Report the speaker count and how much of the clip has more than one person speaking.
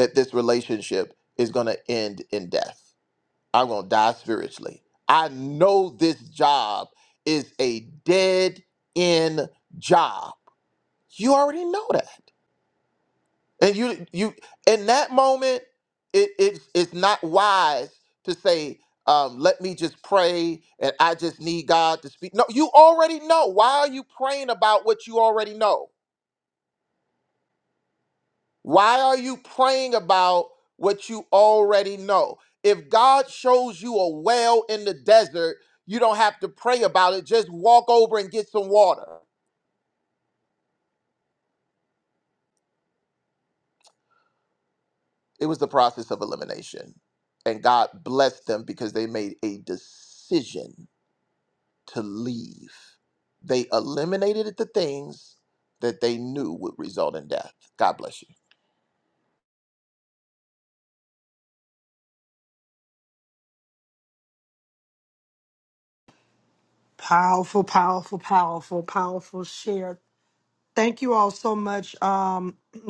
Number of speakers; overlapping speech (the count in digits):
2, no overlap